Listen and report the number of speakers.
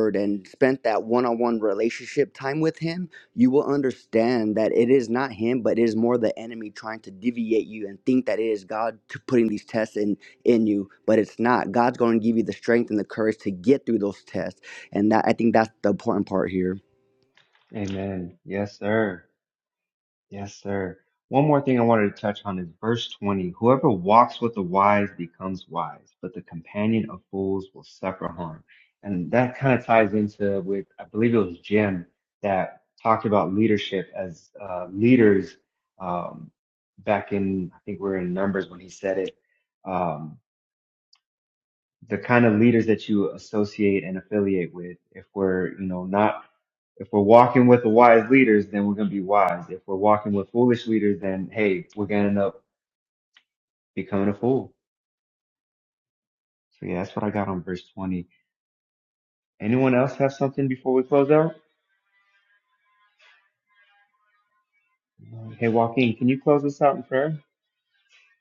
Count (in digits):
2